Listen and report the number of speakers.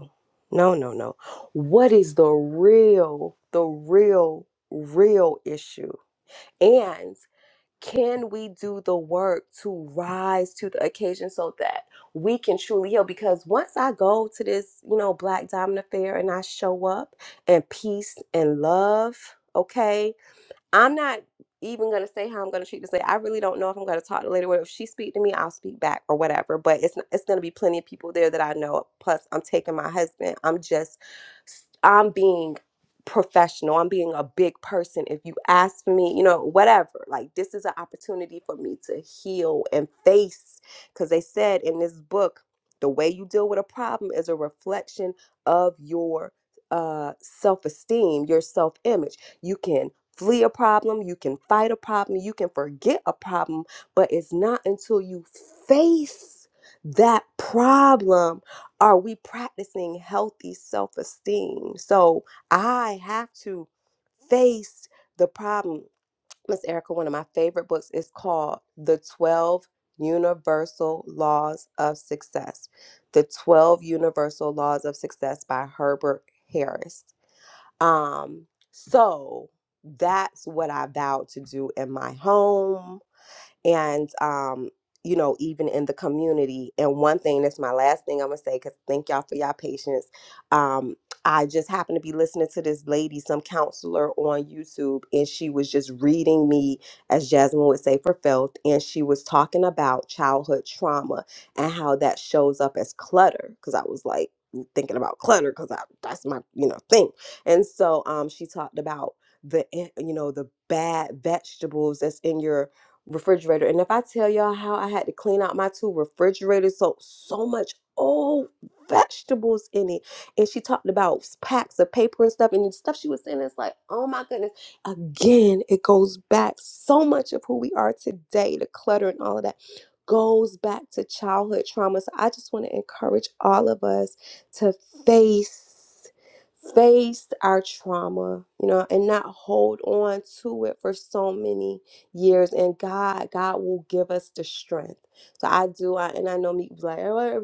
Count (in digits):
1